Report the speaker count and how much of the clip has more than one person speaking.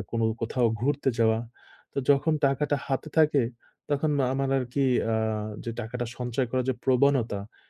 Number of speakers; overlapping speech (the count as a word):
one, no overlap